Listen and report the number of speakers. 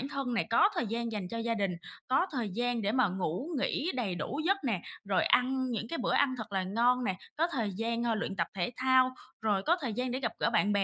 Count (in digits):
1